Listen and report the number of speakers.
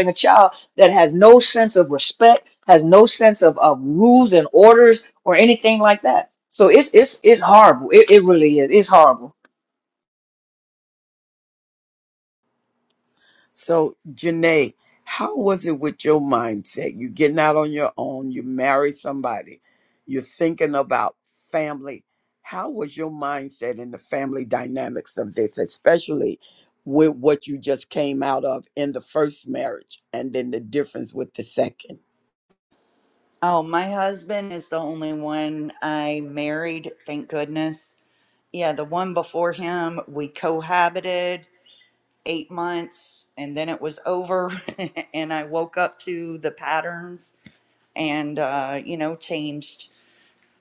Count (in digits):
3